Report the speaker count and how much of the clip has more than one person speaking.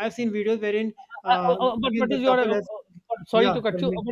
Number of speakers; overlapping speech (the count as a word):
two, about 50%